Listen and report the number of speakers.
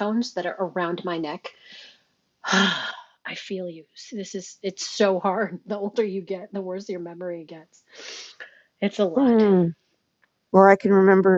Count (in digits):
2